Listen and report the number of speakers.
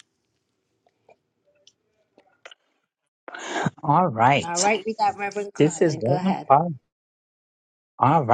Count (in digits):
2